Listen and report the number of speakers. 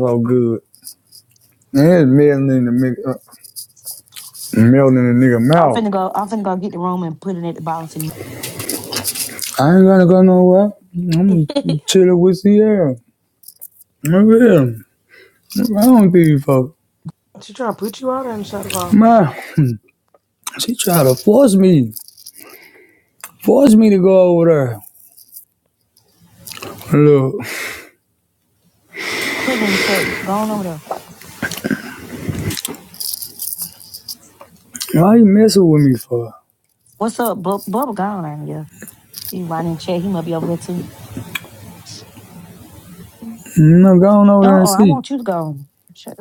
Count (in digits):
3